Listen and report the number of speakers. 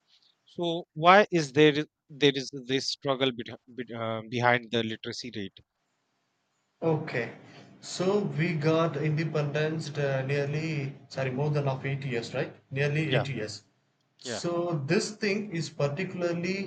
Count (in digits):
2